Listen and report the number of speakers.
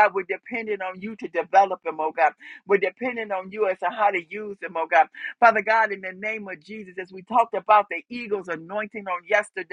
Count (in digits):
1